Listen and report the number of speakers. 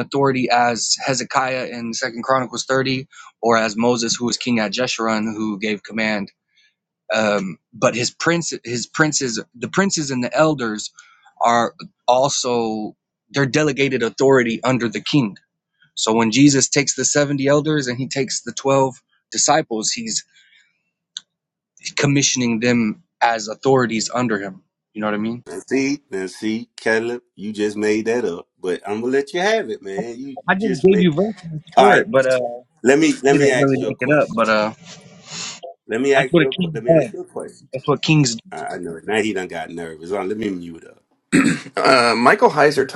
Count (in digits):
3